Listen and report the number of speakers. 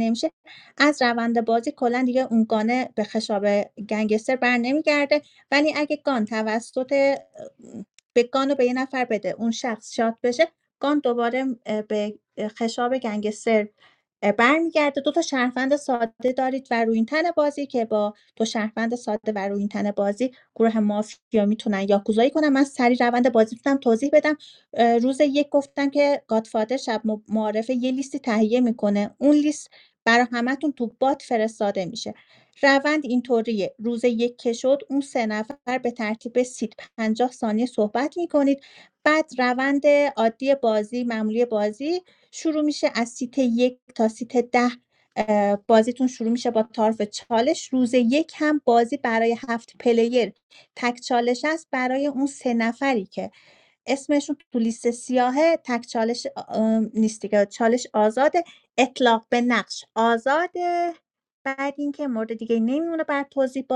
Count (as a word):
one